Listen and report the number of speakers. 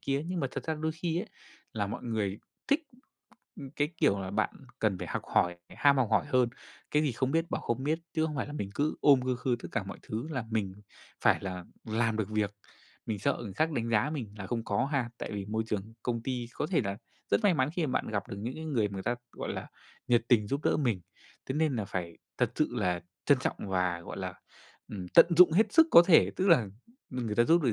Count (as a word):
one